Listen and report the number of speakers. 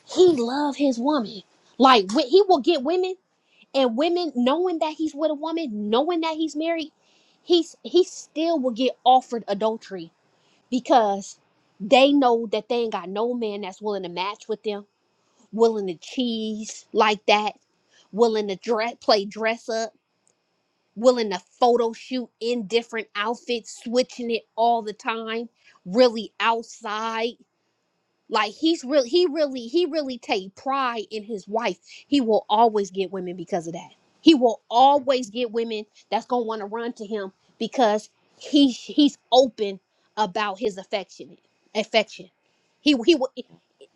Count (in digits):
1